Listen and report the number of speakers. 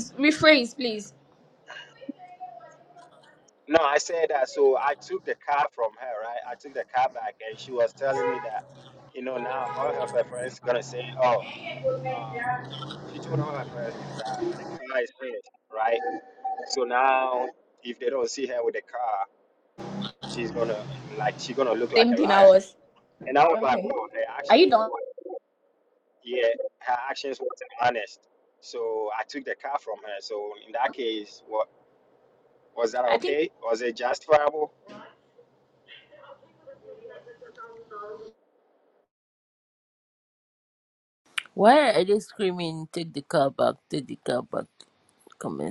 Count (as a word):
three